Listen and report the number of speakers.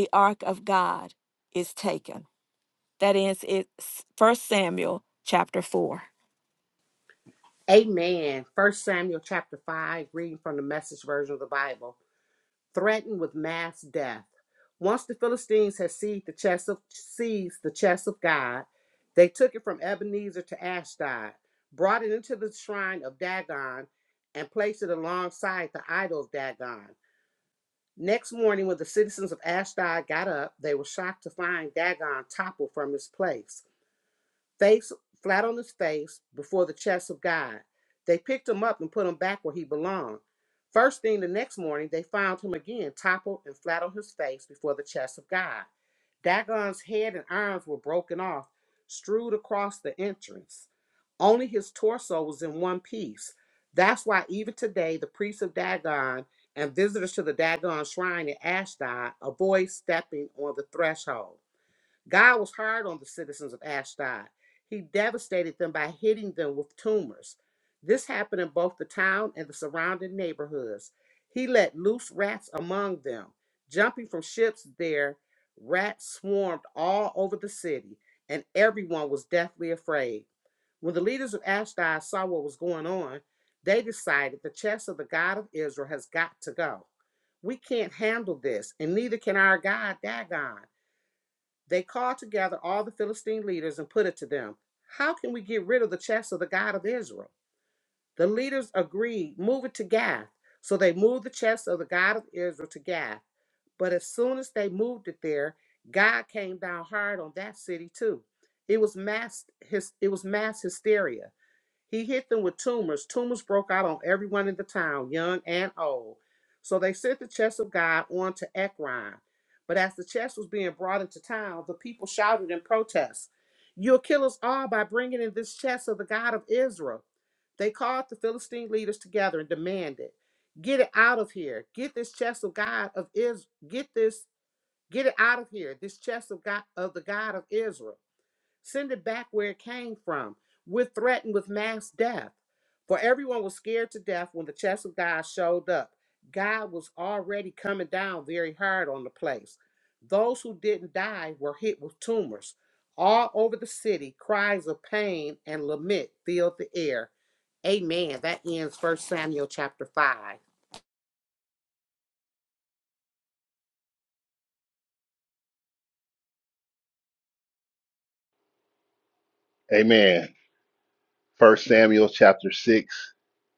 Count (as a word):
three